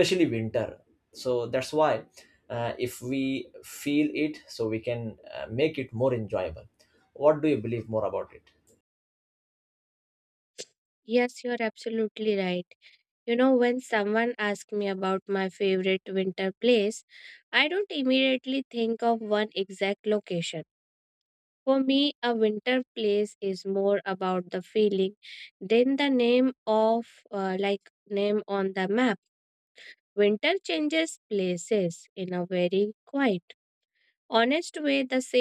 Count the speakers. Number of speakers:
2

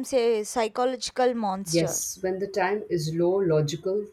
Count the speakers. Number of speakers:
2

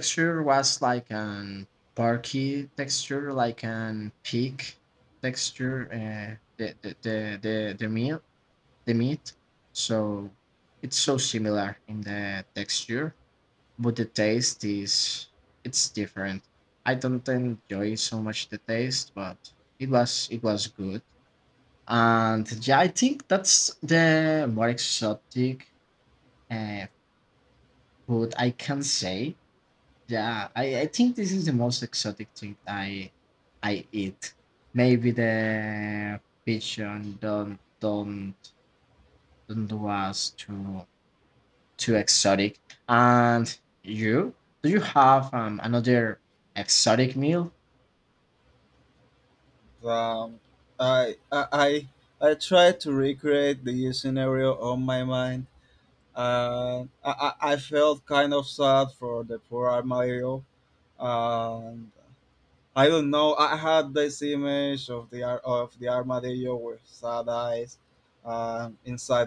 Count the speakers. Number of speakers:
2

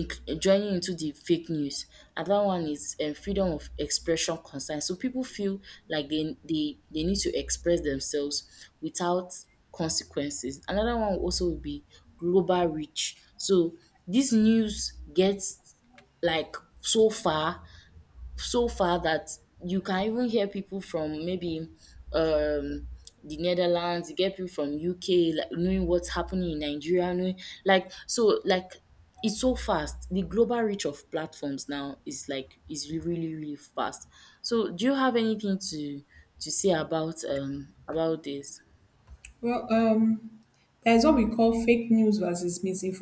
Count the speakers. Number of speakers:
2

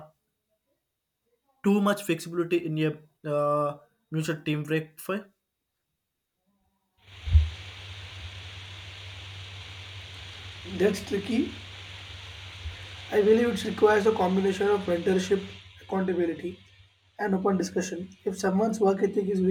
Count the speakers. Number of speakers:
2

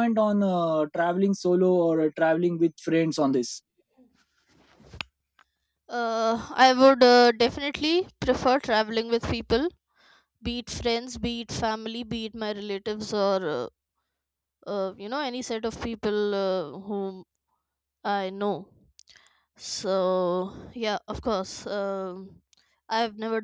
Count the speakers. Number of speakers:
2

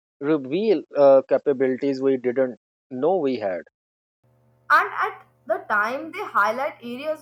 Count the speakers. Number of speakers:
2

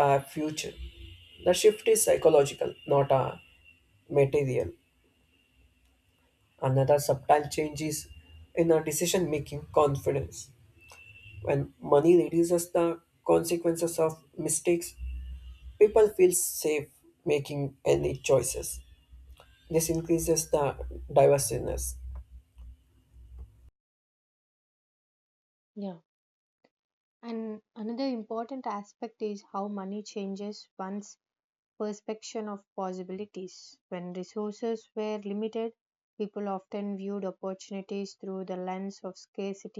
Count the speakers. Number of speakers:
2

